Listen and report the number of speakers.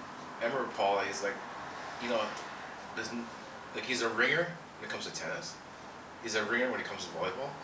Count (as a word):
one